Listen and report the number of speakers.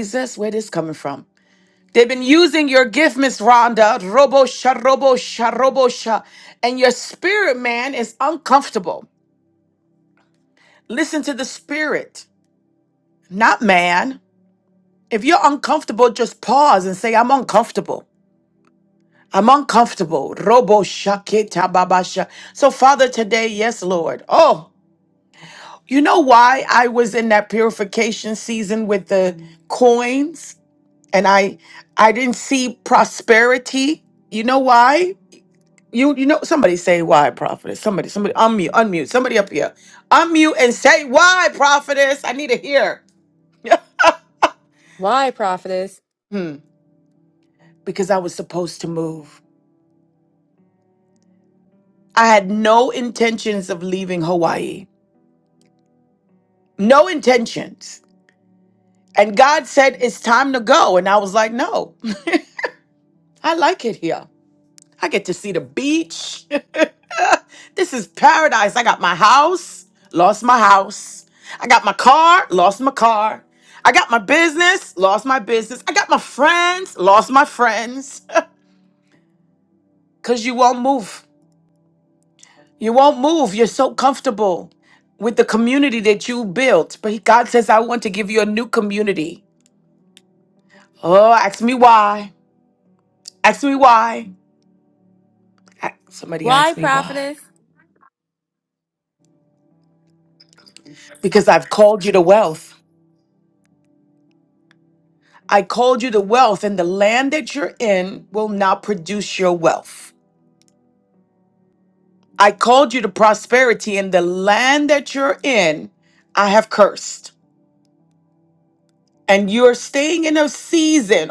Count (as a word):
two